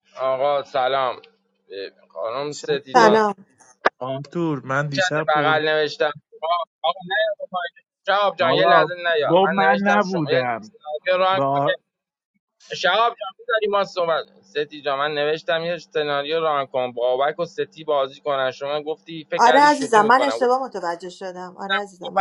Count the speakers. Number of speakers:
3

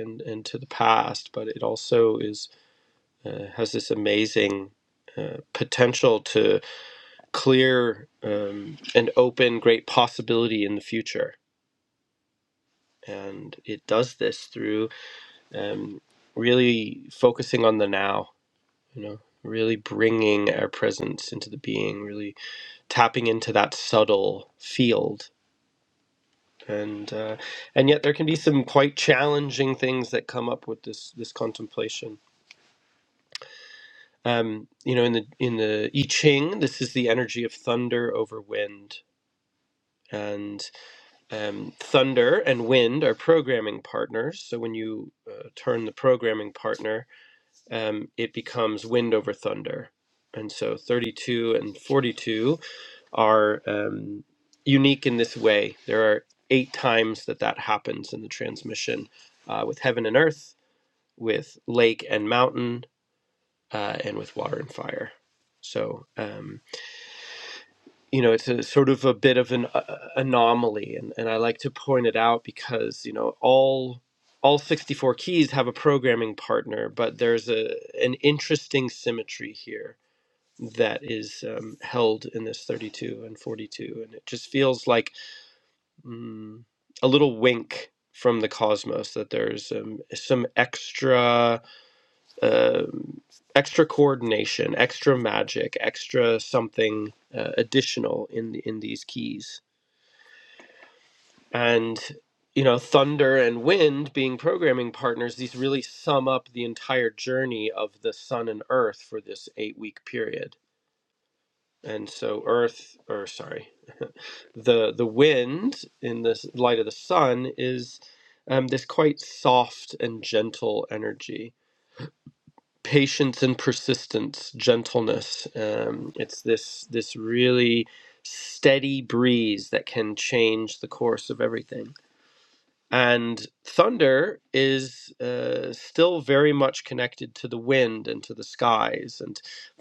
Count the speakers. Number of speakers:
1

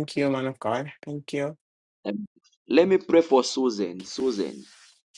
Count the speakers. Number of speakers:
2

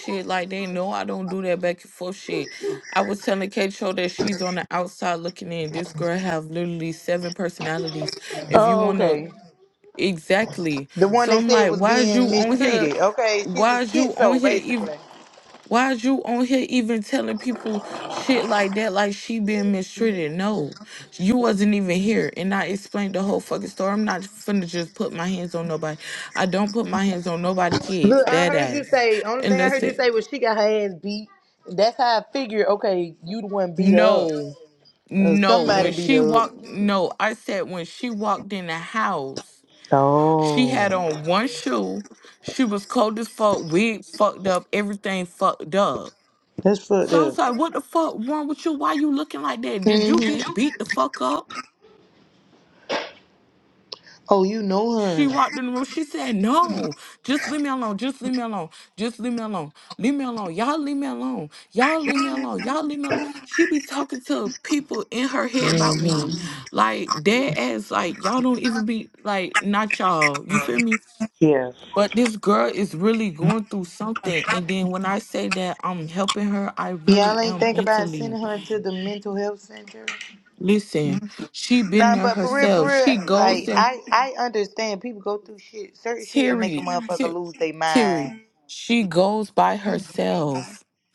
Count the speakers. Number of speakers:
2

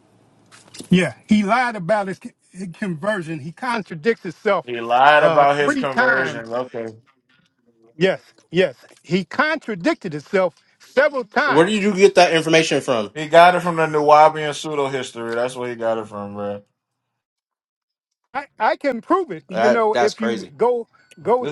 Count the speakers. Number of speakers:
3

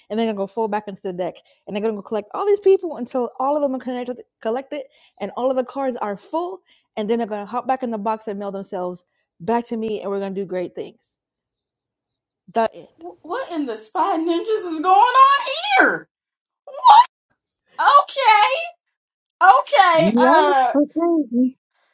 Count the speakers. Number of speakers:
3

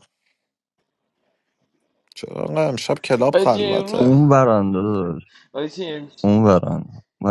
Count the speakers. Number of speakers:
3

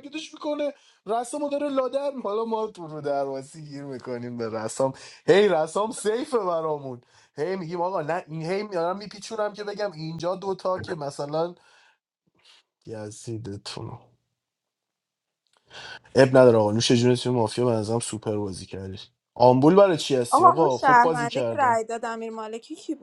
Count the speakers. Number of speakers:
2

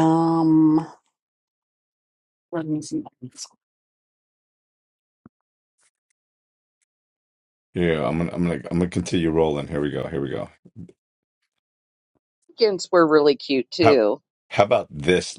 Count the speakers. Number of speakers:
3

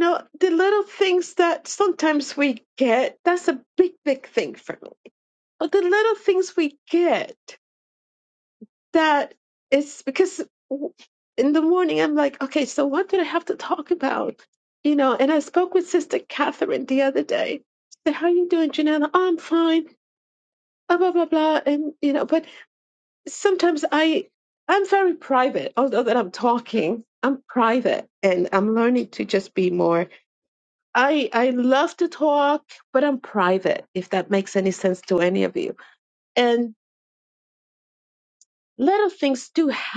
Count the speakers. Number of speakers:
1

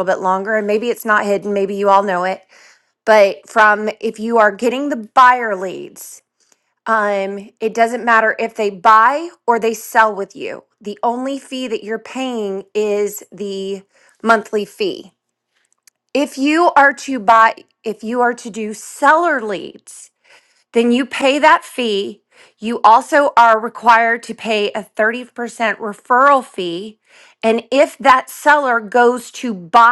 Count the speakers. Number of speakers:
1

